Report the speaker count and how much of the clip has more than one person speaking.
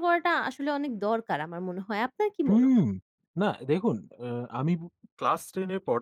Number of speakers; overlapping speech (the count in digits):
2, about 4%